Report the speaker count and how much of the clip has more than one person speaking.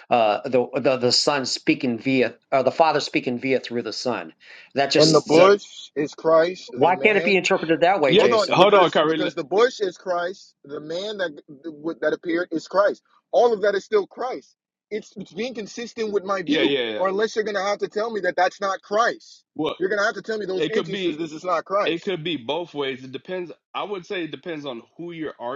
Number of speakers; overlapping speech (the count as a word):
three, about 15%